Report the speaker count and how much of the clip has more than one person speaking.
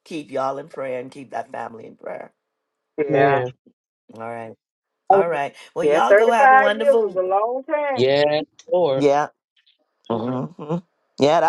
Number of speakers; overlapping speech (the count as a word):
three, about 17%